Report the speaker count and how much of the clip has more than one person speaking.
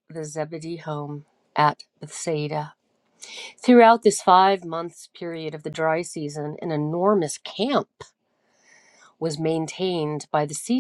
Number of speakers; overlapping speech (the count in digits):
1, no overlap